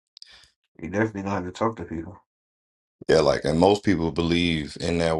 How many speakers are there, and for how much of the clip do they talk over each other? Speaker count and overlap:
two, no overlap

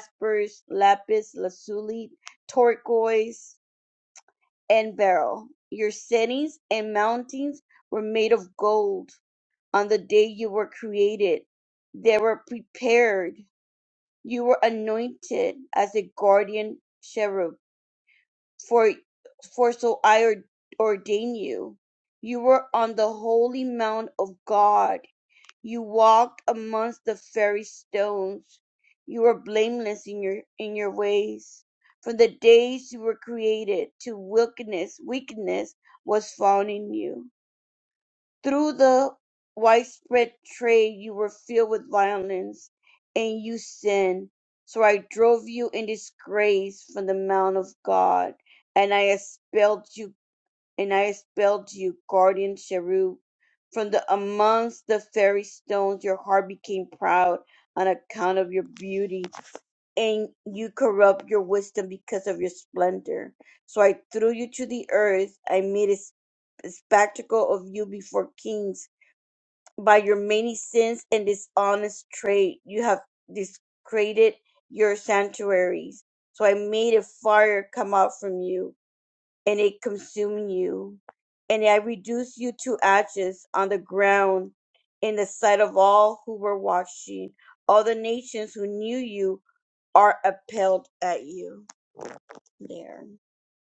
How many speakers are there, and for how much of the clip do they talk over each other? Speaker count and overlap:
one, no overlap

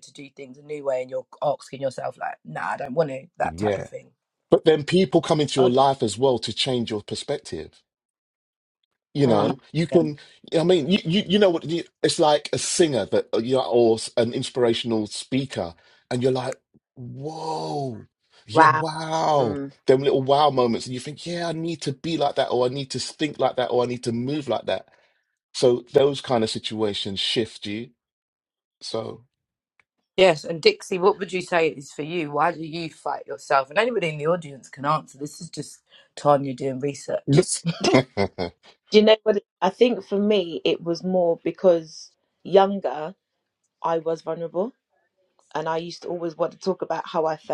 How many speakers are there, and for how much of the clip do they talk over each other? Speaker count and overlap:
three, about 4%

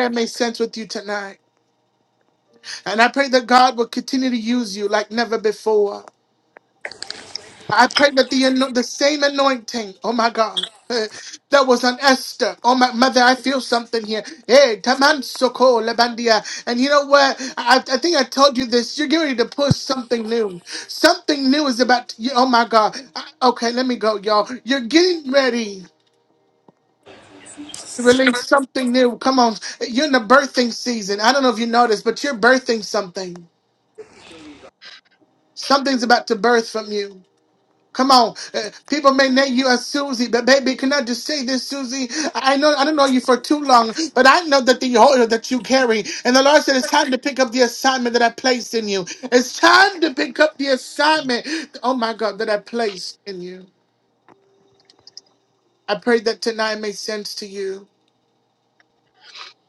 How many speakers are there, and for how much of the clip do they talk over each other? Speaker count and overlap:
one, no overlap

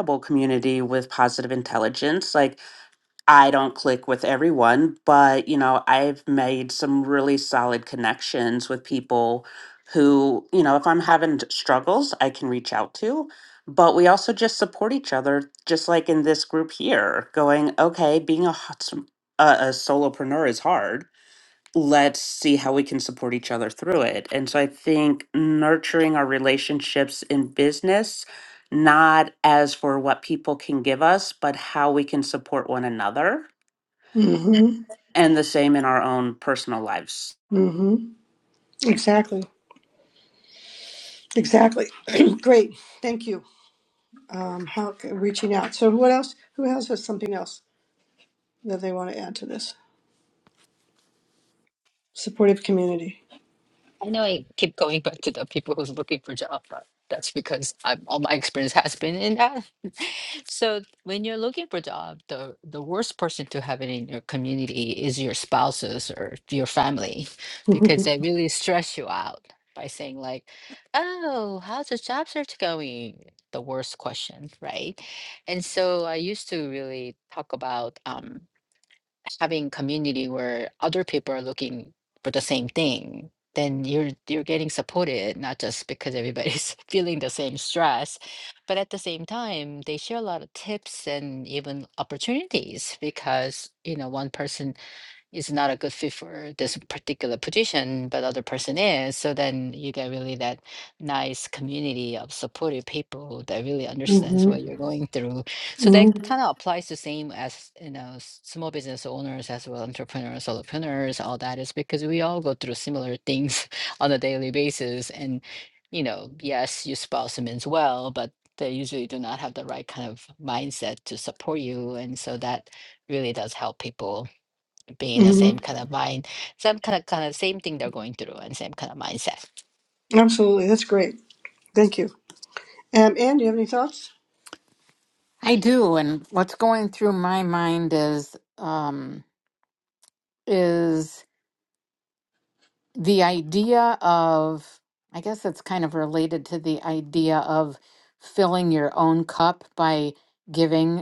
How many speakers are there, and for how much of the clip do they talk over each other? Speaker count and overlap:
four, about 1%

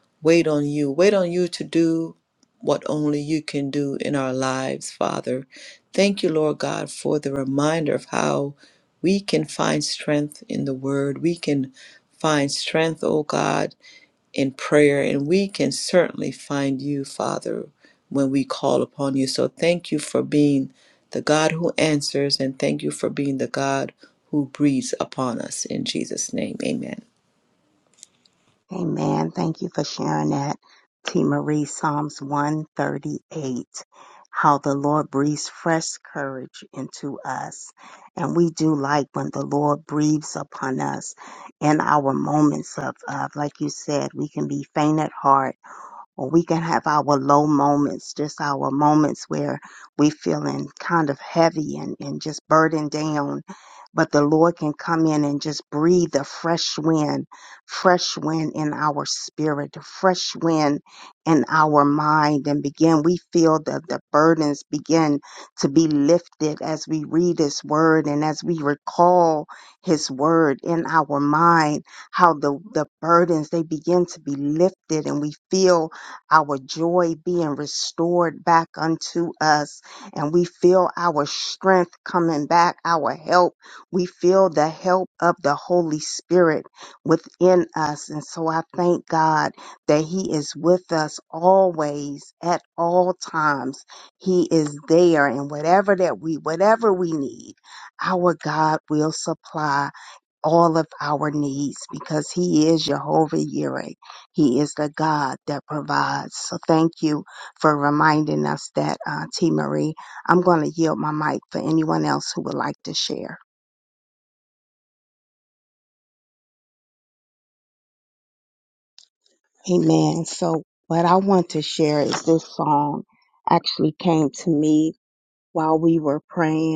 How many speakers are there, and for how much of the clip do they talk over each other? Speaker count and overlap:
two, no overlap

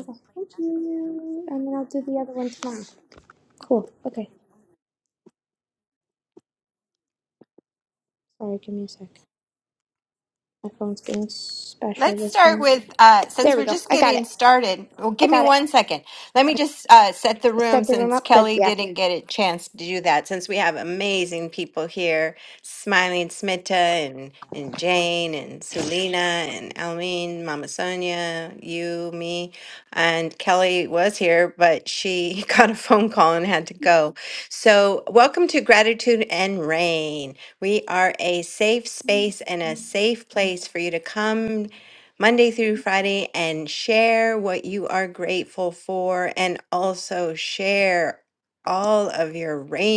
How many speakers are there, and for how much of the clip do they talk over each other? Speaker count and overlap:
two, about 6%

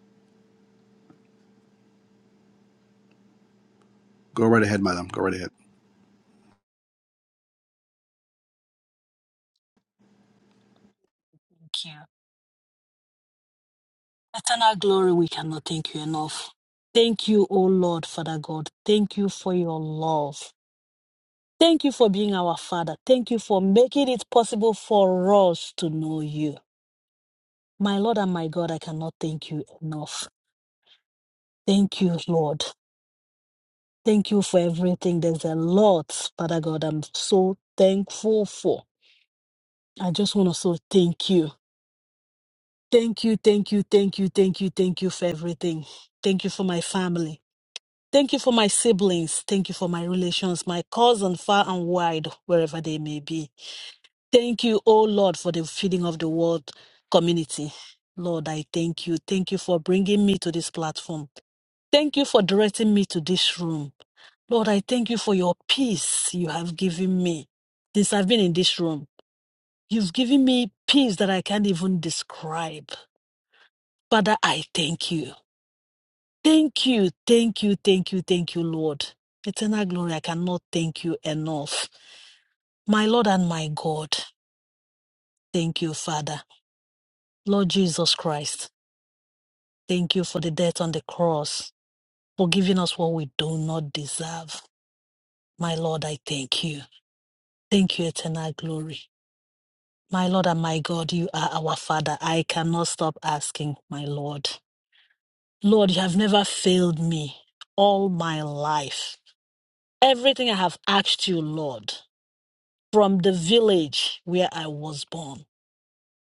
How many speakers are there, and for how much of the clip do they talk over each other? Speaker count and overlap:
two, no overlap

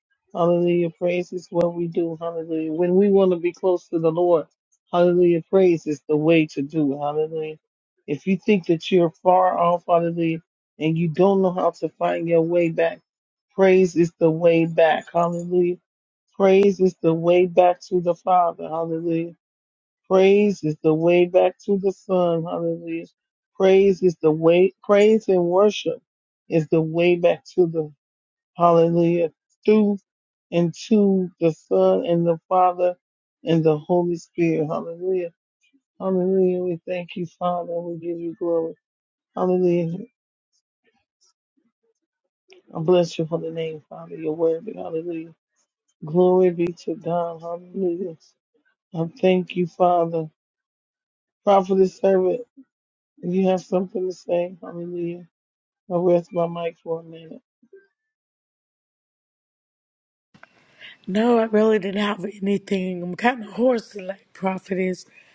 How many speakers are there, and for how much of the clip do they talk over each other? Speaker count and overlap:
two, no overlap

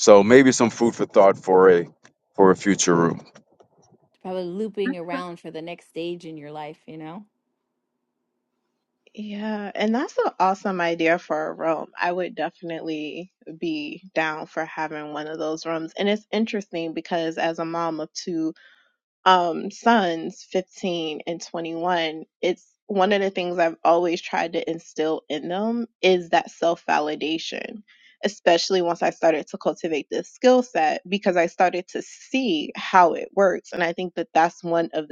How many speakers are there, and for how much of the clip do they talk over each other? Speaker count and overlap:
three, no overlap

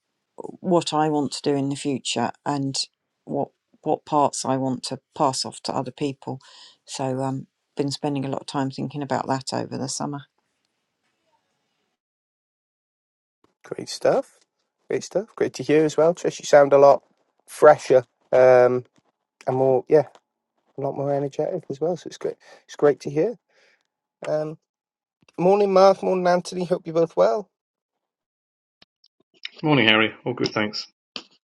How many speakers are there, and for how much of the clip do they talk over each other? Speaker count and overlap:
three, no overlap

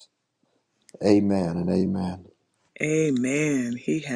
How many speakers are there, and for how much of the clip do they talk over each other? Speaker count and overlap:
two, no overlap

